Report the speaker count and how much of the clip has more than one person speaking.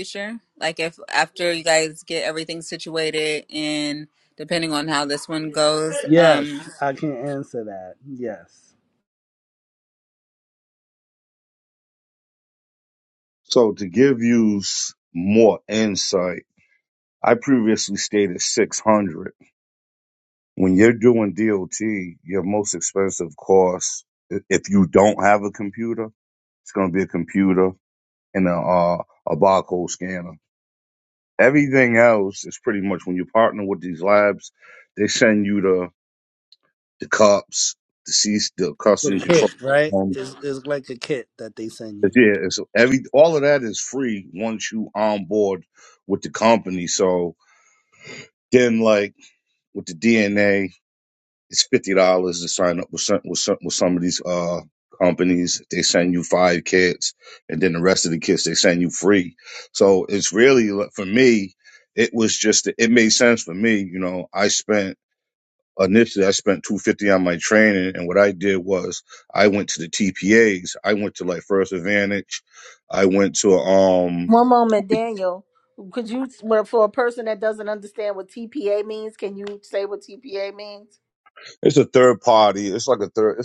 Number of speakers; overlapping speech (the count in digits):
4, about 2%